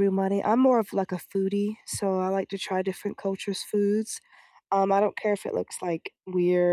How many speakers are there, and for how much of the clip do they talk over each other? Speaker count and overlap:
1, no overlap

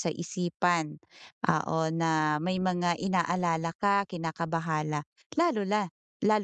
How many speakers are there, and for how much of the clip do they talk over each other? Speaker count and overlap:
1, no overlap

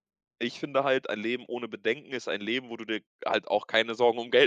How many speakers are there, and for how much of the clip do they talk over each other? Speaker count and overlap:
1, no overlap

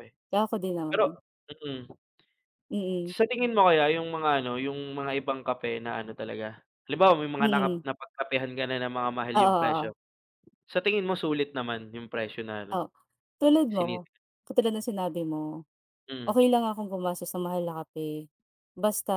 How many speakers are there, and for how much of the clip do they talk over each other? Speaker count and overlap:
2, about 8%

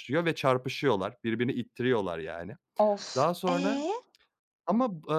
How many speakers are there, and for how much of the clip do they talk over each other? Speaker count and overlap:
2, about 13%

